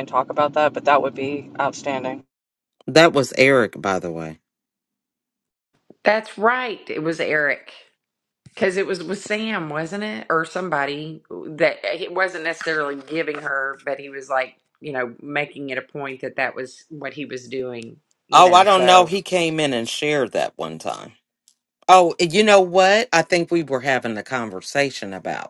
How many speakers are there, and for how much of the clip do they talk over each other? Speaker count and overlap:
3, about 3%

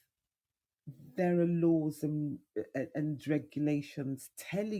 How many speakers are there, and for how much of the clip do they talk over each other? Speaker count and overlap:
1, no overlap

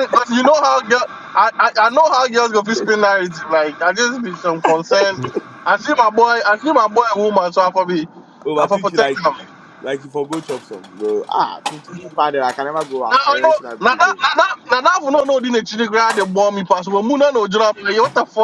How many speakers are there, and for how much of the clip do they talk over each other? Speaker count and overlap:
2, about 8%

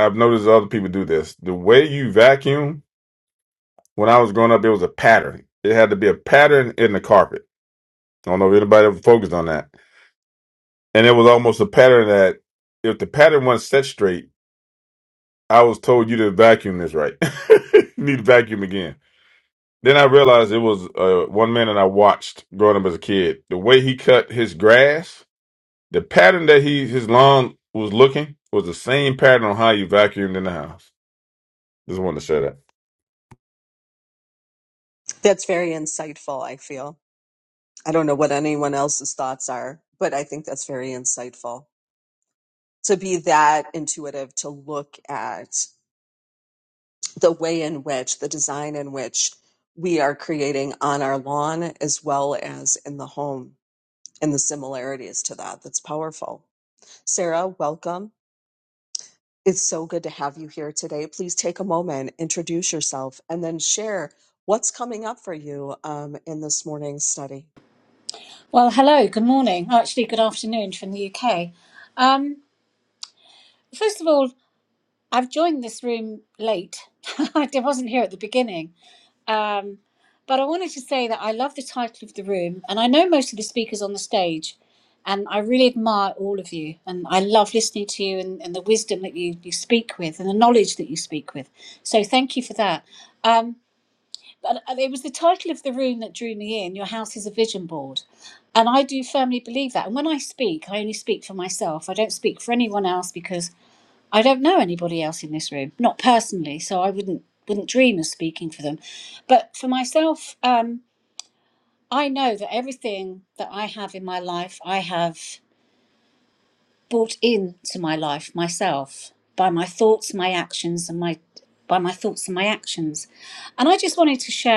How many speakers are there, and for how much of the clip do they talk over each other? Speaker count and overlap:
3, no overlap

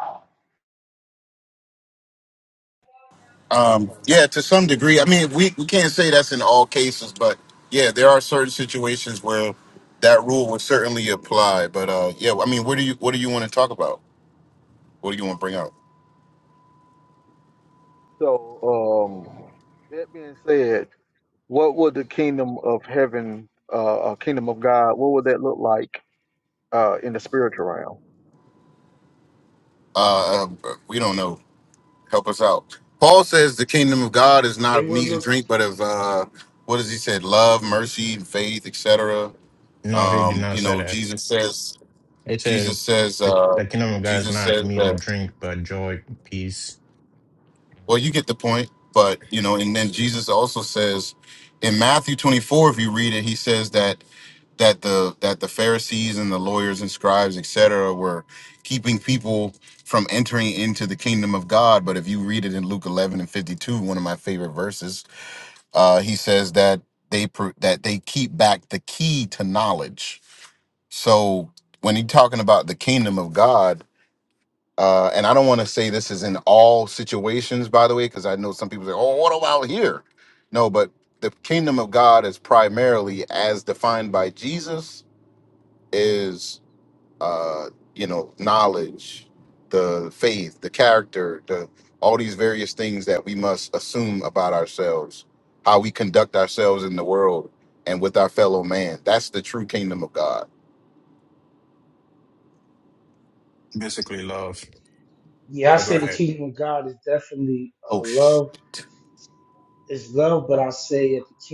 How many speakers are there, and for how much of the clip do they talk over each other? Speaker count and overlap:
4, about 4%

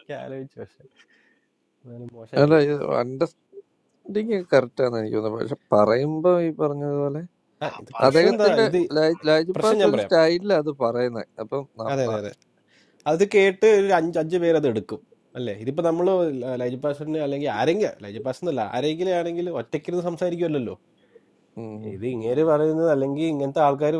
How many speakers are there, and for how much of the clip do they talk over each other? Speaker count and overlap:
2, about 8%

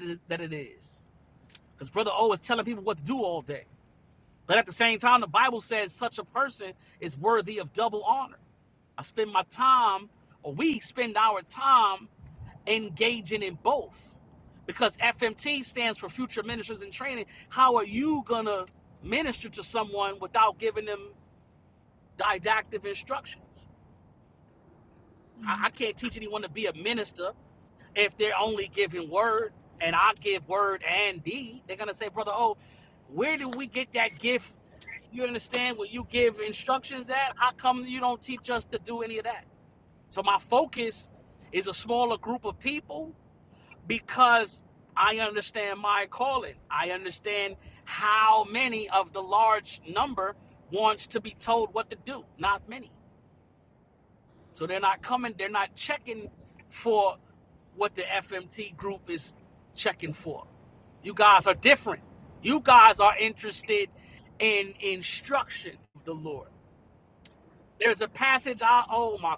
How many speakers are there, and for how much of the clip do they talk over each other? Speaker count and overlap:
1, no overlap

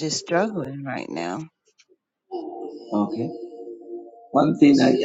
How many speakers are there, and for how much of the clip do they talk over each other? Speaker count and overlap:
2, no overlap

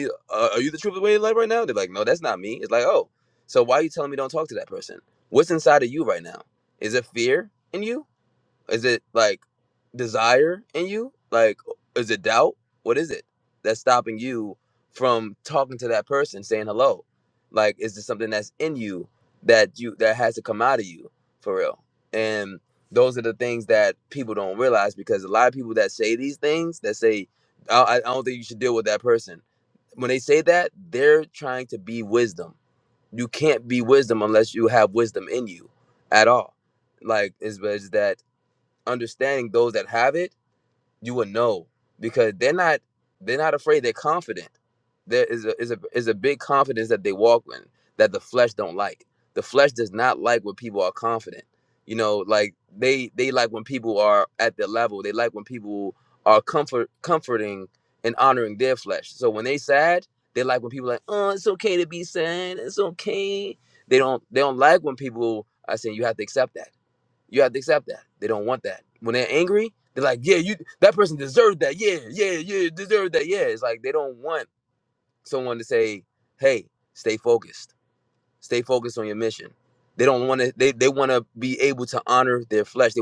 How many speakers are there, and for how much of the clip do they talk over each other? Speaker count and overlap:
1, no overlap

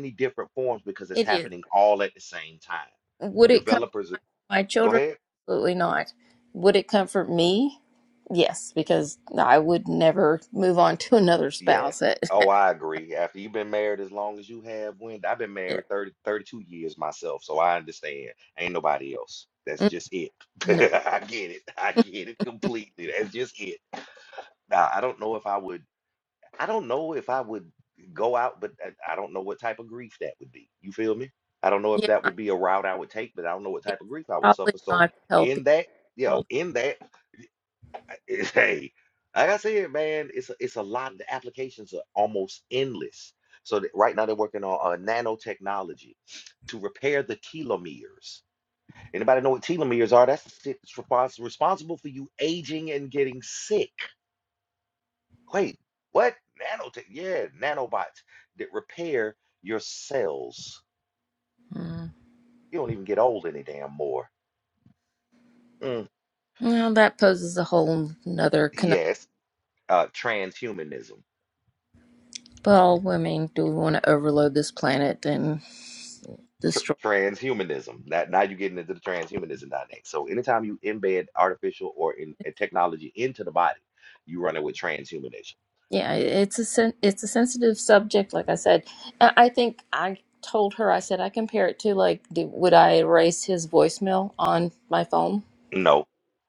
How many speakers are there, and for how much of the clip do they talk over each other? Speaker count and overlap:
2, about 4%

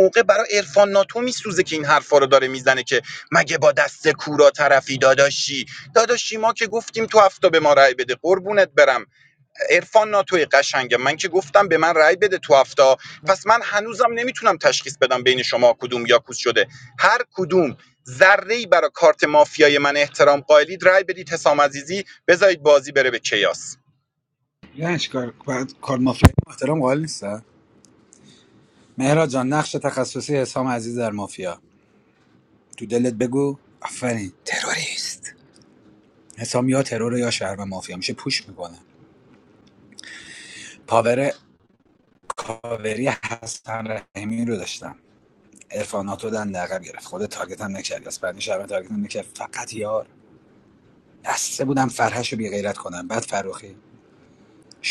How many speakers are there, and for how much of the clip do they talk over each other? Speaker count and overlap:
2, no overlap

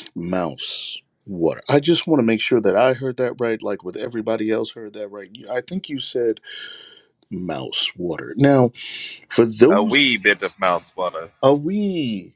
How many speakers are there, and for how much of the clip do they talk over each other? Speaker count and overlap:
2, about 2%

